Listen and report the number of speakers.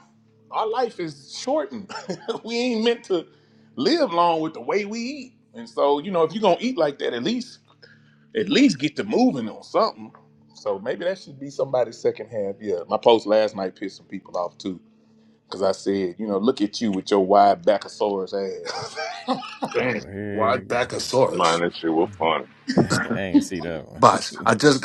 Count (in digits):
4